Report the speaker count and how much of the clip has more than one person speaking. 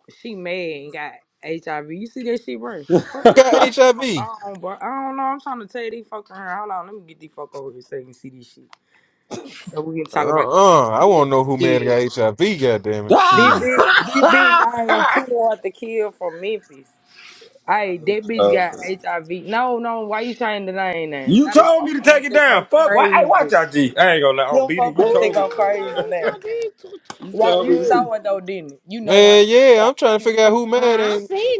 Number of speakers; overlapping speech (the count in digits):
4, about 29%